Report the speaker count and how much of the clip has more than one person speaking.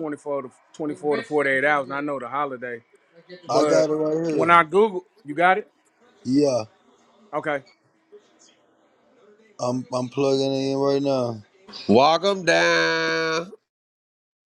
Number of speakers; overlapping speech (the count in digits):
3, about 4%